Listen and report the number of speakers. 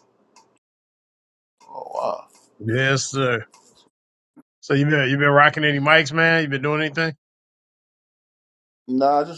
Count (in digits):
2